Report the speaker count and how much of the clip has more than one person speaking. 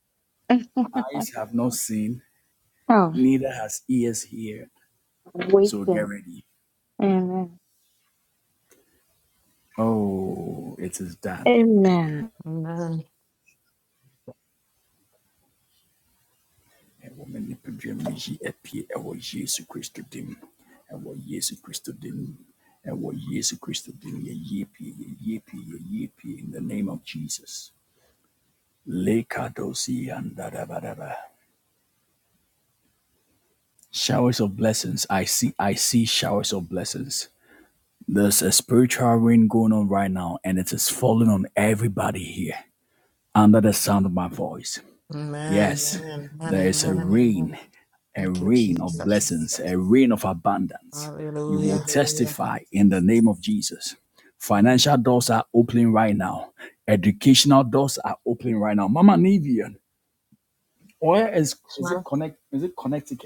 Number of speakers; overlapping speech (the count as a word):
three, about 4%